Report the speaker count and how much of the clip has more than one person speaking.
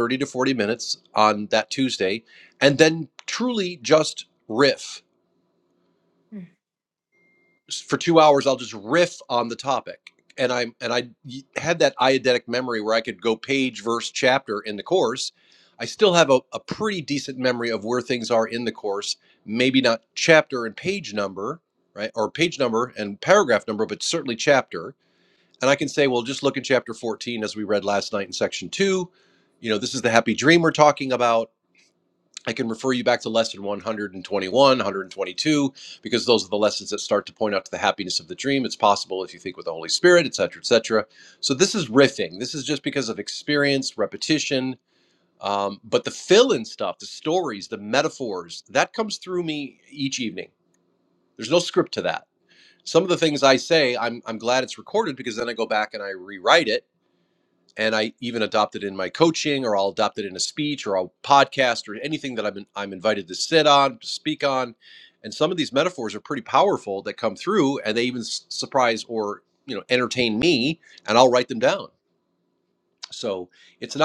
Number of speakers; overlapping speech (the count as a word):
one, no overlap